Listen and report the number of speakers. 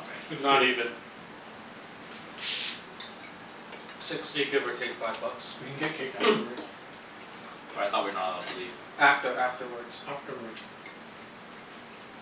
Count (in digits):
3